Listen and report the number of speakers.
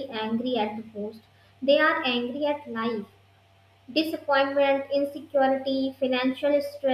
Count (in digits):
1